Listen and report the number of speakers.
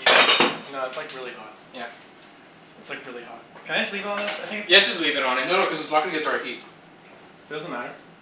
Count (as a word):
three